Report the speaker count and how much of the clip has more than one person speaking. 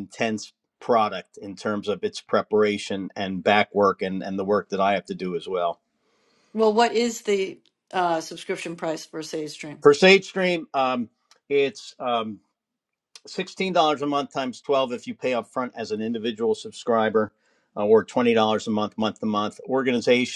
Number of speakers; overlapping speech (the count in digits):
2, no overlap